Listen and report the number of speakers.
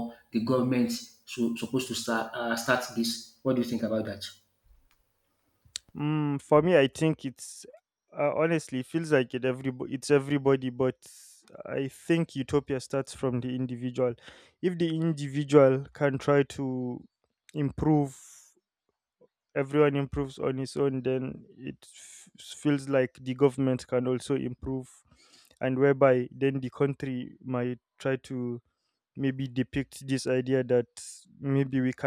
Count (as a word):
two